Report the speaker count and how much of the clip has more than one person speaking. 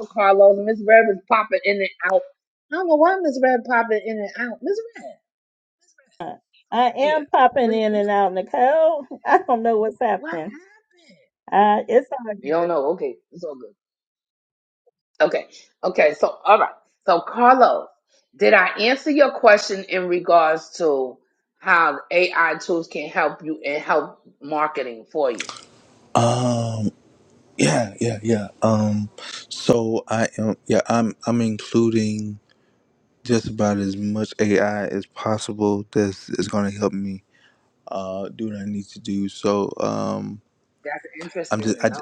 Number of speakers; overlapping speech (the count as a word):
three, about 3%